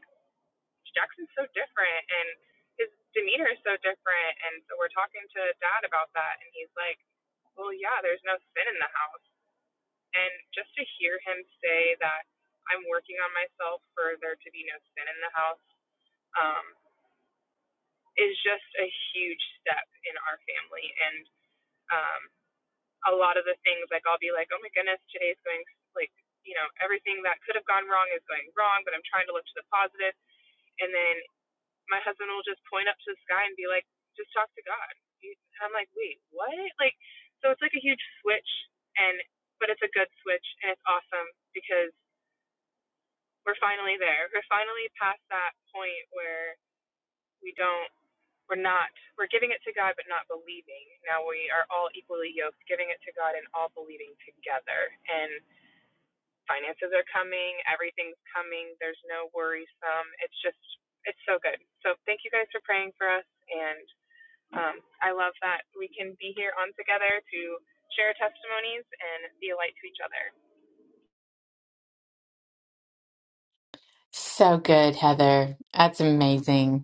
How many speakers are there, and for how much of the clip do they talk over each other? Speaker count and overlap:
two, no overlap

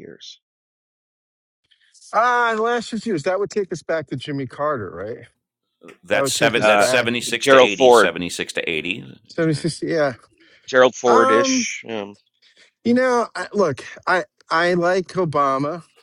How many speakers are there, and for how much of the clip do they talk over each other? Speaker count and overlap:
three, about 14%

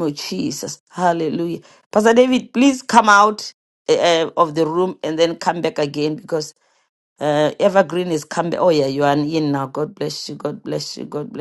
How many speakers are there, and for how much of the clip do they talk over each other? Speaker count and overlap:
one, no overlap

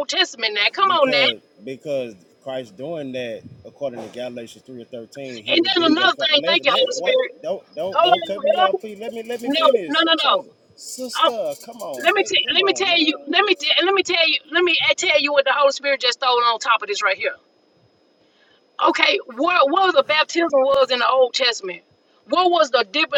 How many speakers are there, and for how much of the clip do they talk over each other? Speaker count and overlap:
two, about 24%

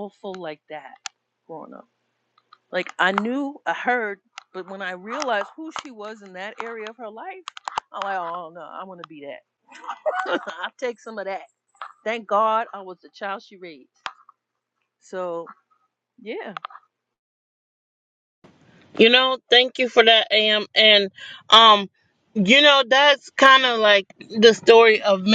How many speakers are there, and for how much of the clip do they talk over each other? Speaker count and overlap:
two, no overlap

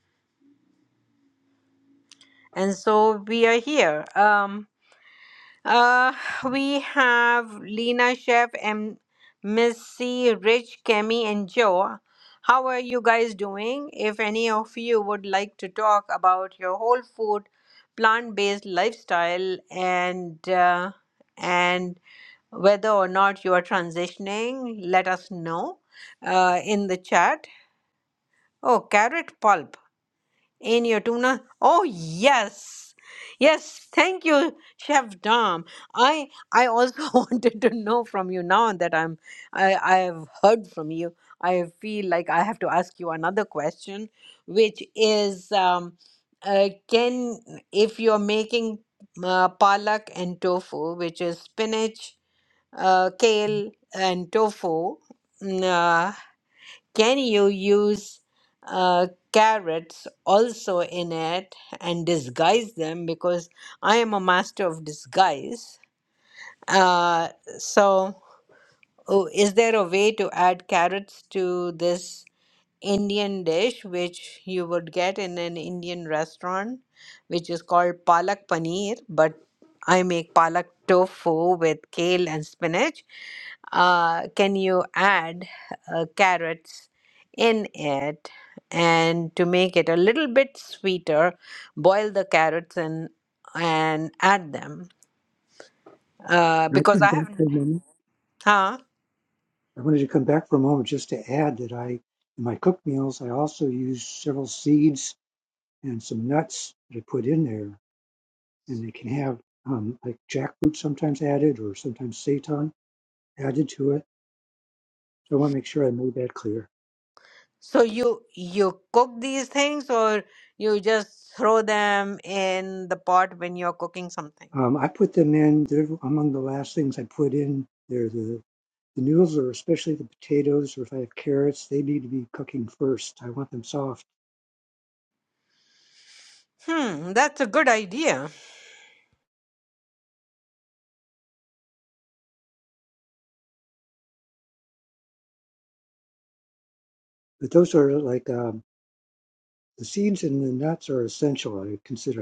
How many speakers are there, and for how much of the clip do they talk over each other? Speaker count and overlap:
two, about 1%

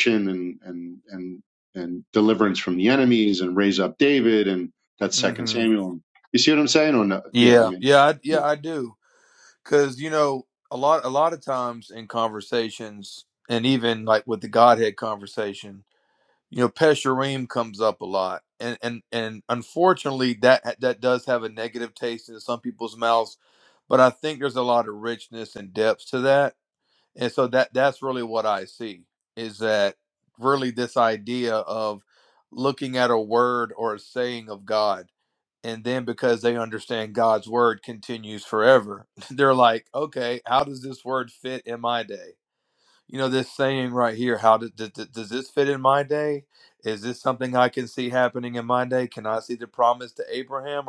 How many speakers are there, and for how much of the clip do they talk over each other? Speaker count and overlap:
two, about 2%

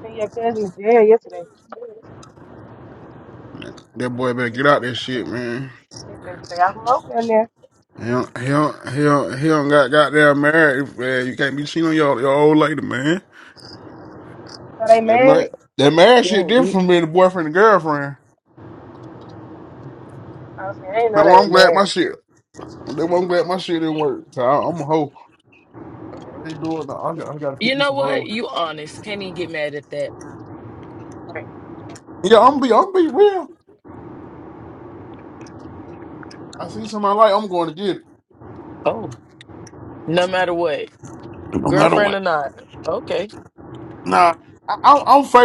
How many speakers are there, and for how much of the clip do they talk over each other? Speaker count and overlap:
three, about 6%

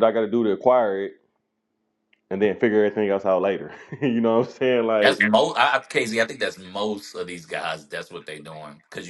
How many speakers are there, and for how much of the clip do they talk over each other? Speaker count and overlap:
two, about 3%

